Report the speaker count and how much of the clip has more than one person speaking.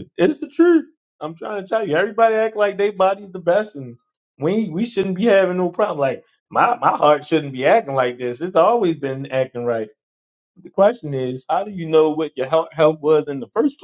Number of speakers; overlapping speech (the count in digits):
1, no overlap